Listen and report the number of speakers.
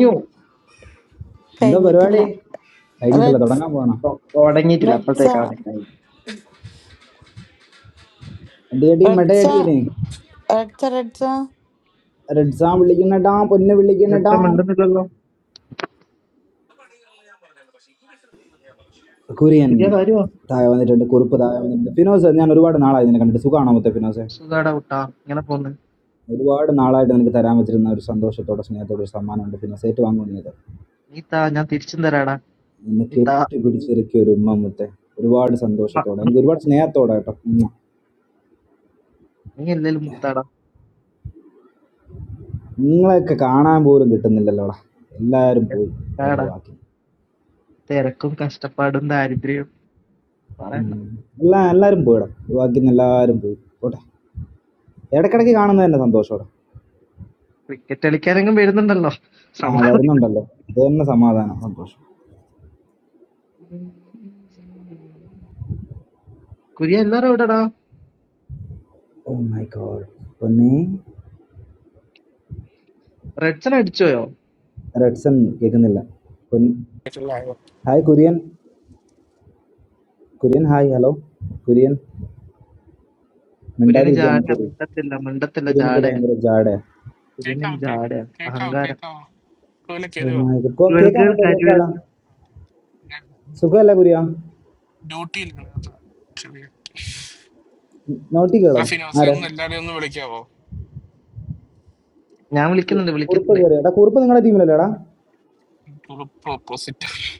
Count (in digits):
4